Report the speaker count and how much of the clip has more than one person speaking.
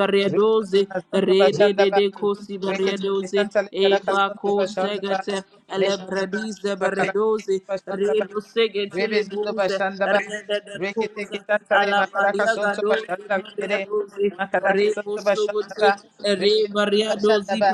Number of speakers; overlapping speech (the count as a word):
two, about 54%